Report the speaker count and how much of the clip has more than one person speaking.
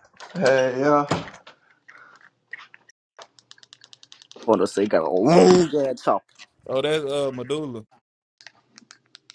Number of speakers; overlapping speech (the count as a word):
three, no overlap